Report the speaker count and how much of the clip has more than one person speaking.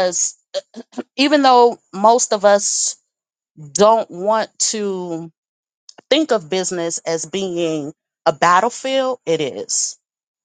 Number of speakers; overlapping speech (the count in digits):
1, no overlap